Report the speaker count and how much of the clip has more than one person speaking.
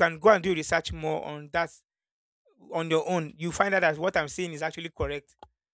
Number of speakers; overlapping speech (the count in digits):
1, no overlap